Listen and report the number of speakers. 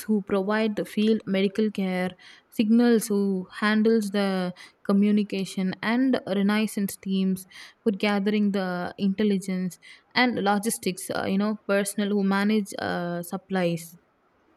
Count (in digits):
1